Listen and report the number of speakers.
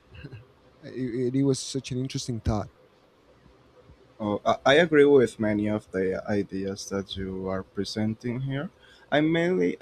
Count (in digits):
2